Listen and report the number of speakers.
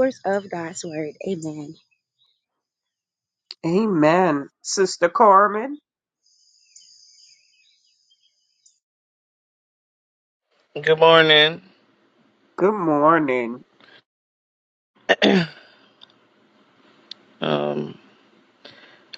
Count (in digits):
3